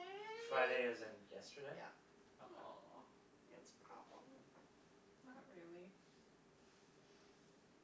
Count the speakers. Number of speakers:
3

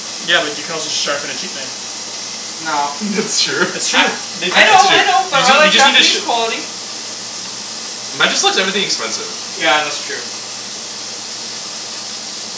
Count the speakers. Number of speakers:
3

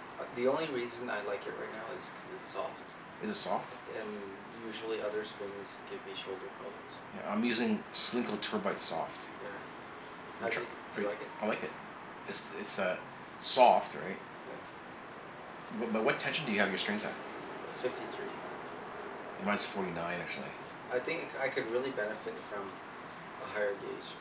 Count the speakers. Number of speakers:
2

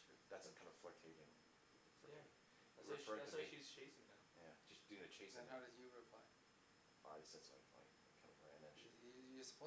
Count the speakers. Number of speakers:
3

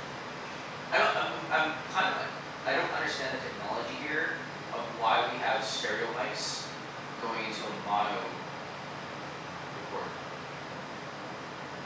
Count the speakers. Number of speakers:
1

